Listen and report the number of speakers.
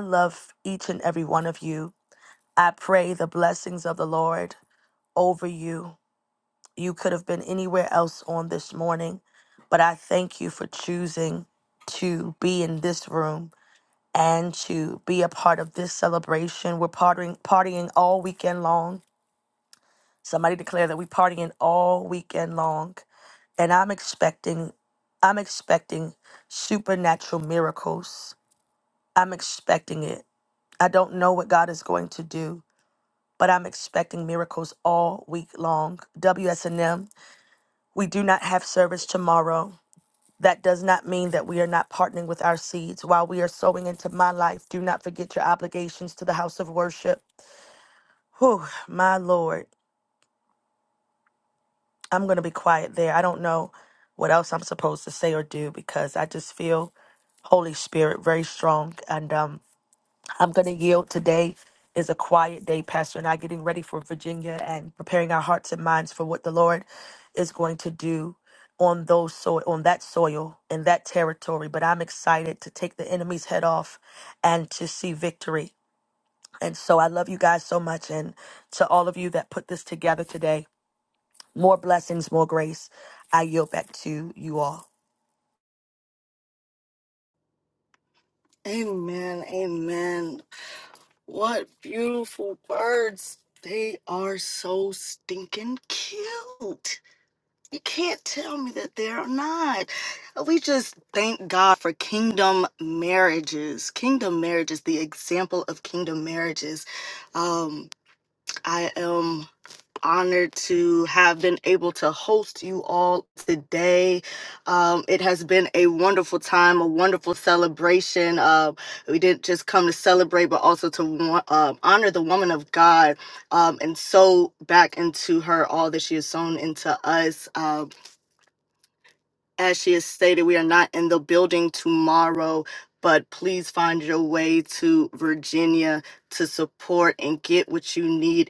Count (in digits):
2